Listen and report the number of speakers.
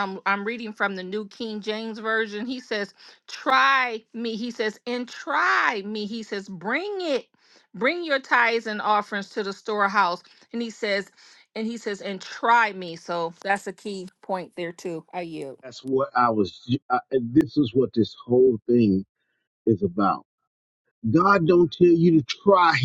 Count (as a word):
two